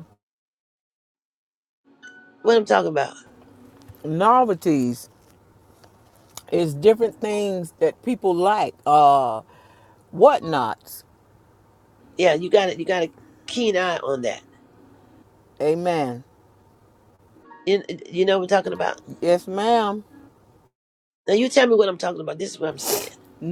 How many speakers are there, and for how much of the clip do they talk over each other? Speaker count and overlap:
two, no overlap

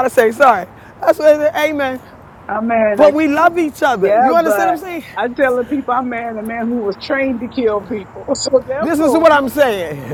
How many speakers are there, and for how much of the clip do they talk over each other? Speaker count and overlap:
two, about 17%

